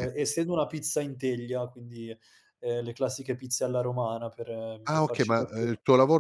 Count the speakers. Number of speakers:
two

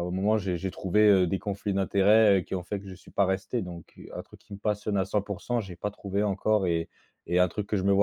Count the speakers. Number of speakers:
one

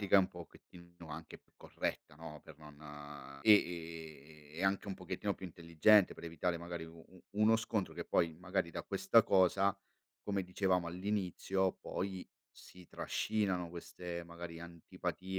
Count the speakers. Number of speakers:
one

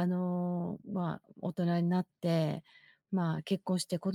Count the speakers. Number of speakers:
one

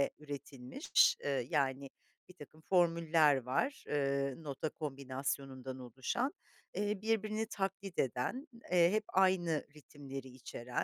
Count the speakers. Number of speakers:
one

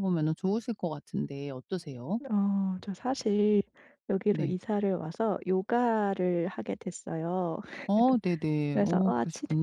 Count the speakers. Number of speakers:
two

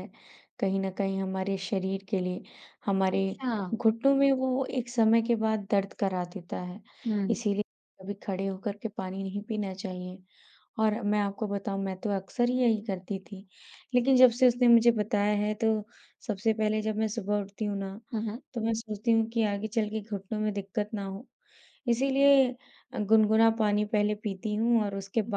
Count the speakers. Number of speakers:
two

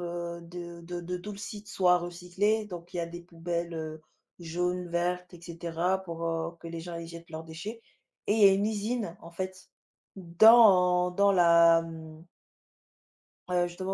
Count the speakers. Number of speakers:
one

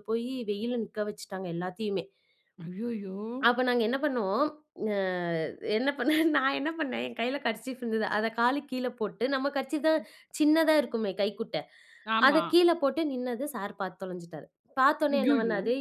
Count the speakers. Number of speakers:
two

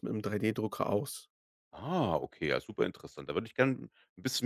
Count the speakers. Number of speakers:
two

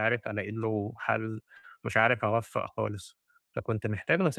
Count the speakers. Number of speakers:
one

